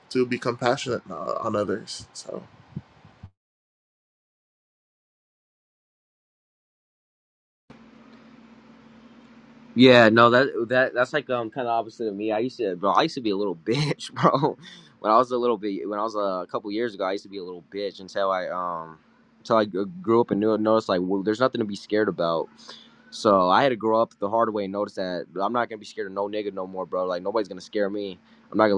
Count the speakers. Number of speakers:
2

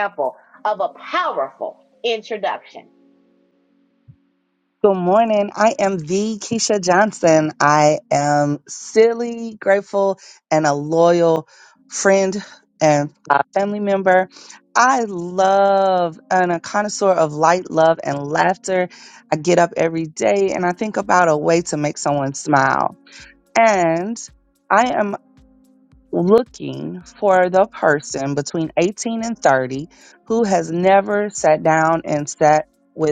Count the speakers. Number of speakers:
2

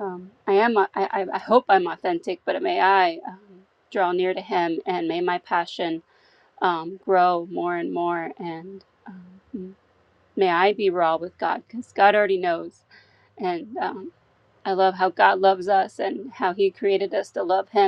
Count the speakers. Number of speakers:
1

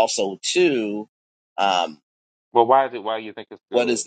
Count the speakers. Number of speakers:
2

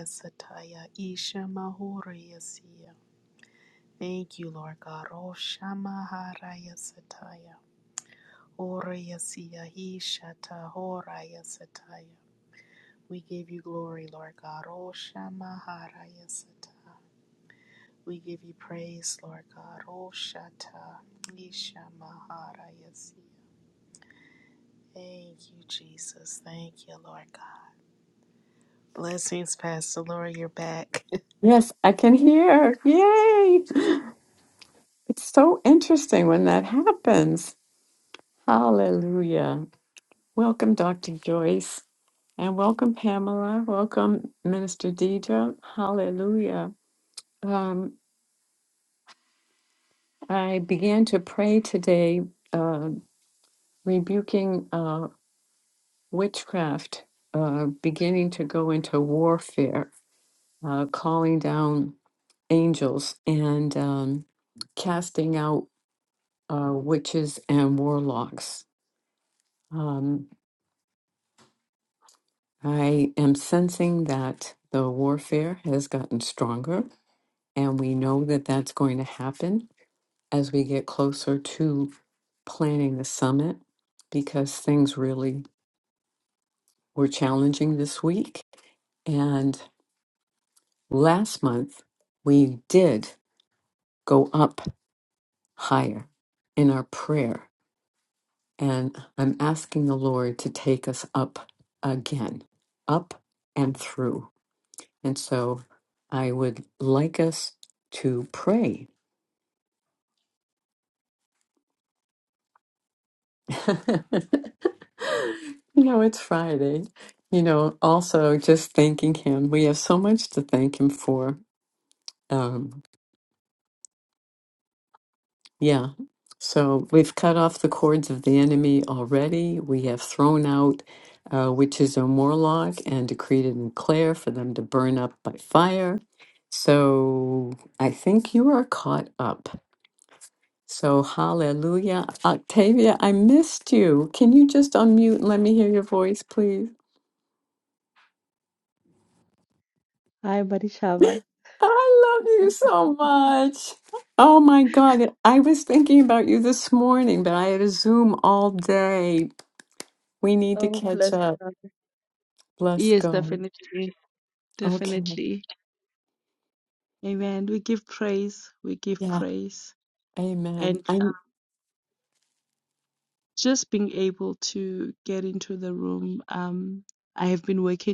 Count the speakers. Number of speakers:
3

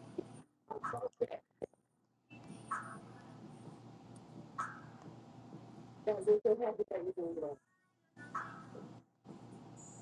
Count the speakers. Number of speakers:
0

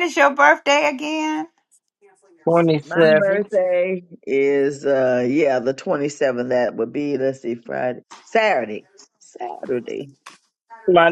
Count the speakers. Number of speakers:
3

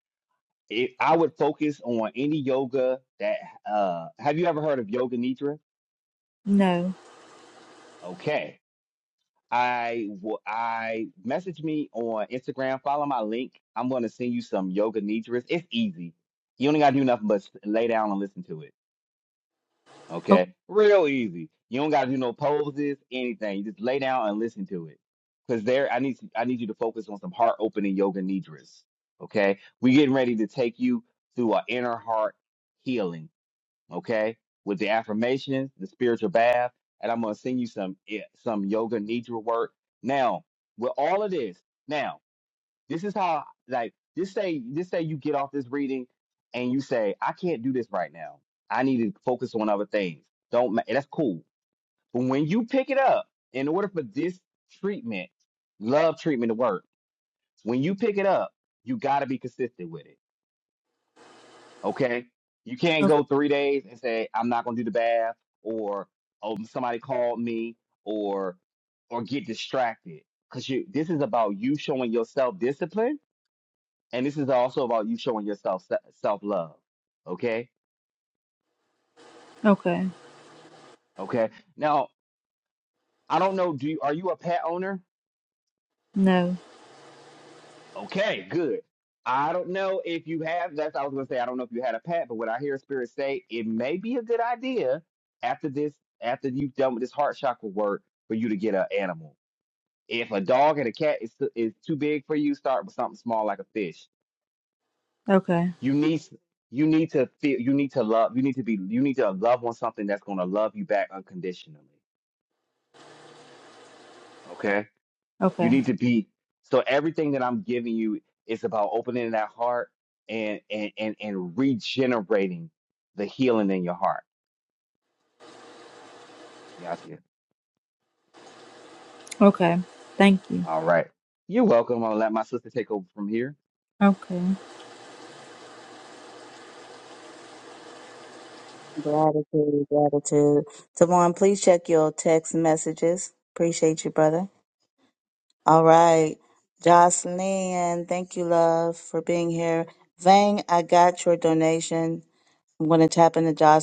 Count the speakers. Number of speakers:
3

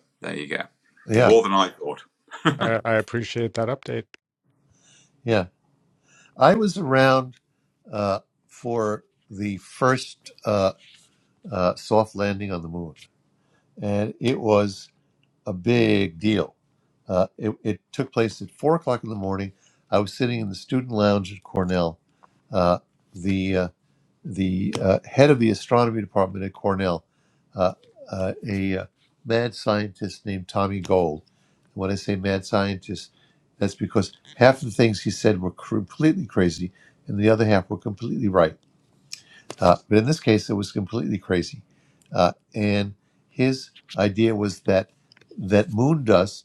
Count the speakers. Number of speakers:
3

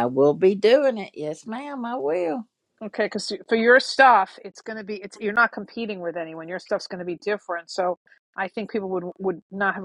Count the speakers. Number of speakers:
2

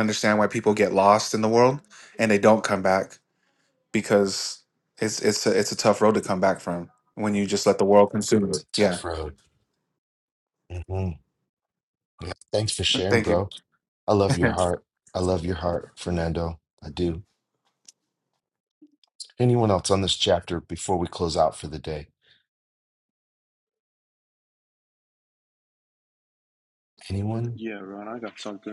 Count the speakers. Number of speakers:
3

